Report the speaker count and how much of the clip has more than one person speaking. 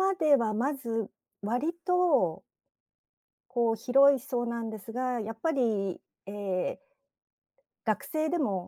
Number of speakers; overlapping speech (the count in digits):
1, no overlap